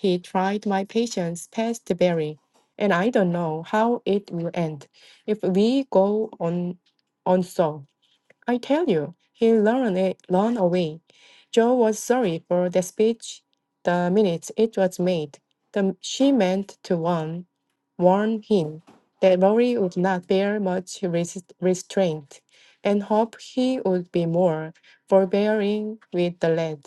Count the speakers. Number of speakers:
1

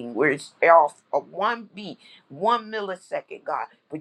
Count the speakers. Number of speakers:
1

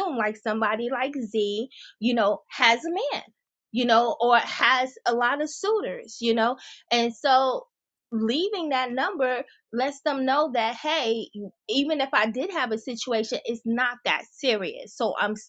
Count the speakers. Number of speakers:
1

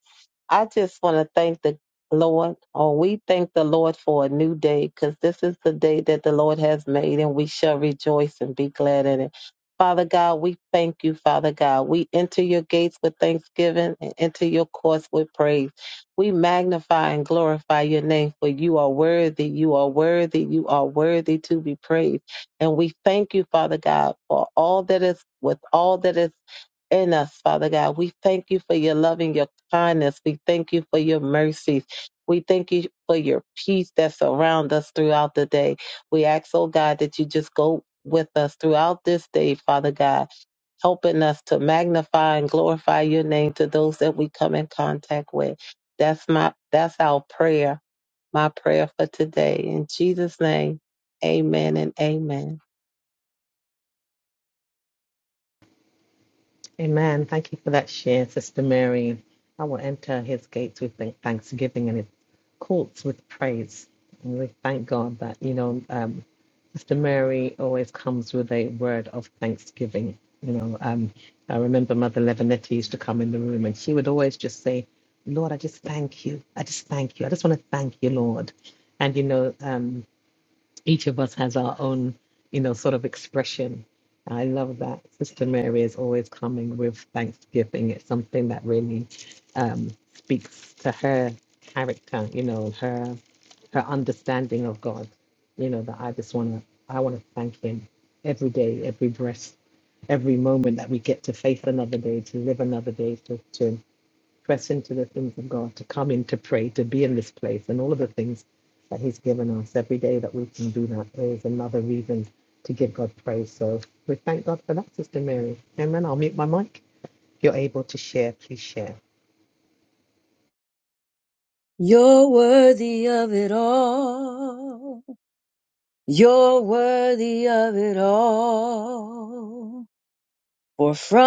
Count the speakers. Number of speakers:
3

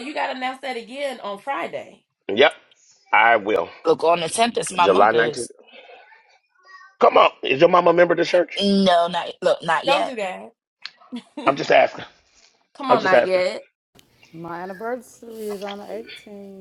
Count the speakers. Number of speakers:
4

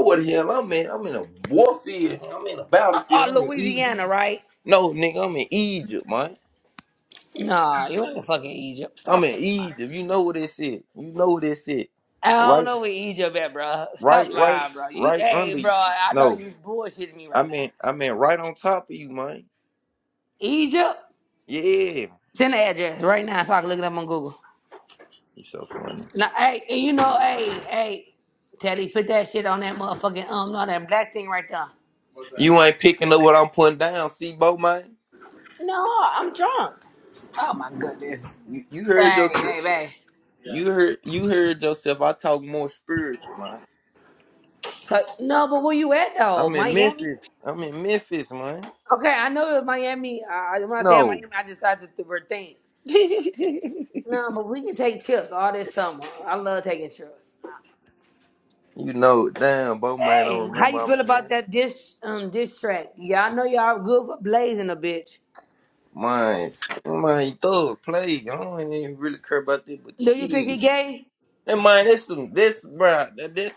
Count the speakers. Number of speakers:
2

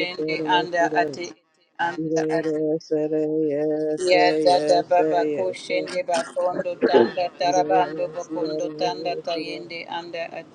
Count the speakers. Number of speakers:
2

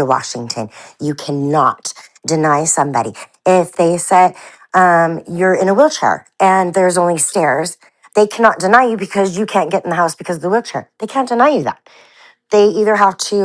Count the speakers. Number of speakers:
1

